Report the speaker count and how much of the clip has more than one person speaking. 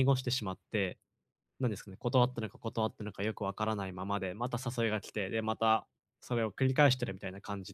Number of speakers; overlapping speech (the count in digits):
1, no overlap